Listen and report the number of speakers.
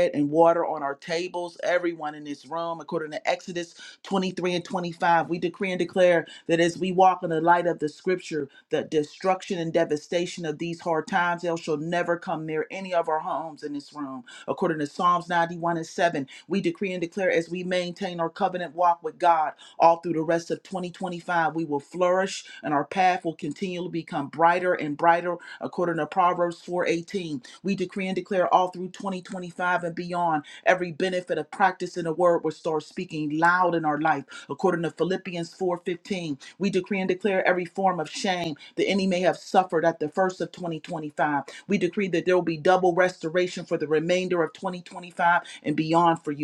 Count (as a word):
one